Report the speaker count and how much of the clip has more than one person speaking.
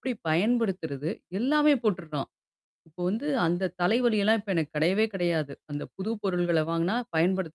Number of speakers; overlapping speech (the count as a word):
one, no overlap